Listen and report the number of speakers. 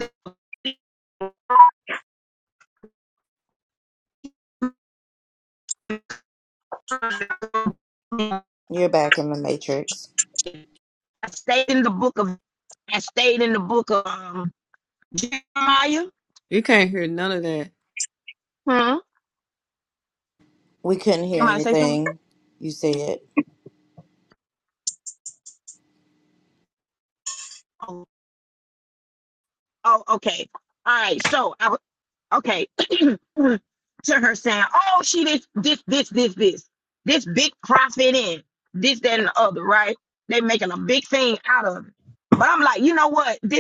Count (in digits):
3